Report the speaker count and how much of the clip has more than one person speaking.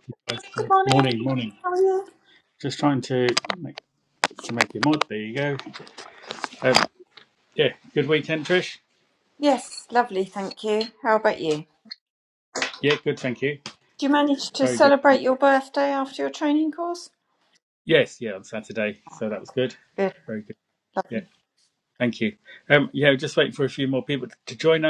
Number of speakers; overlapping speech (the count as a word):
two, about 4%